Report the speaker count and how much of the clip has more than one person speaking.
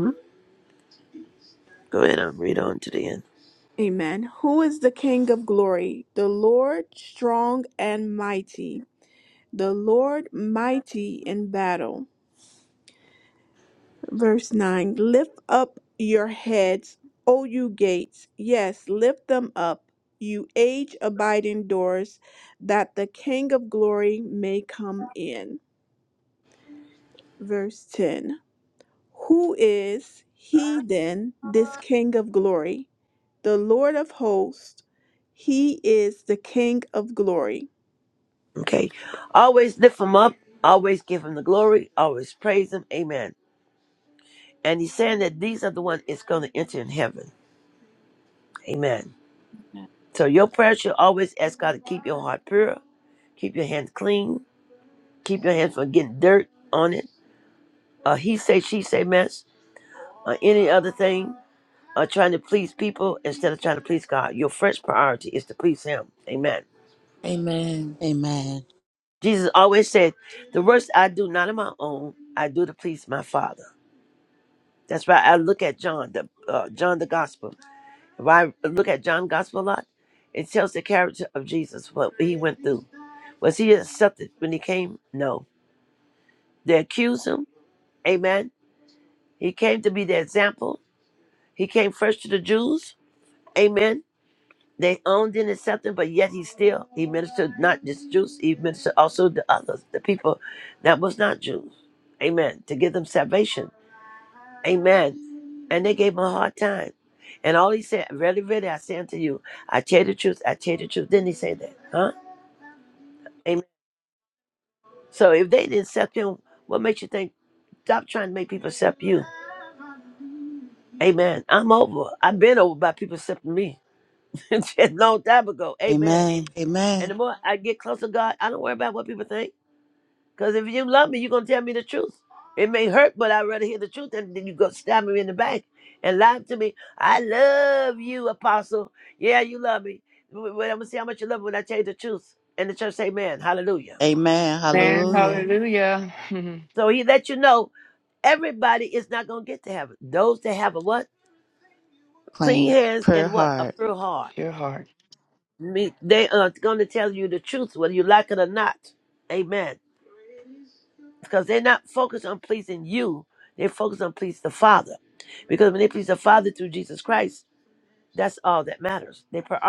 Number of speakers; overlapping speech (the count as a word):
four, about 2%